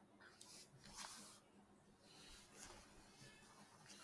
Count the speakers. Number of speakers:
0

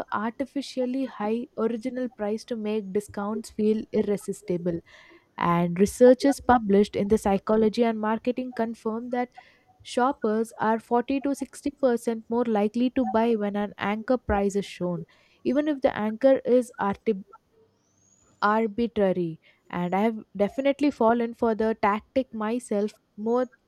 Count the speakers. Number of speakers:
1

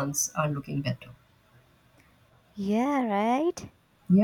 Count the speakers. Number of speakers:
2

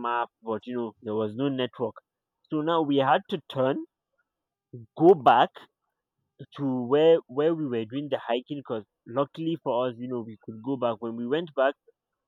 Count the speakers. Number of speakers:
1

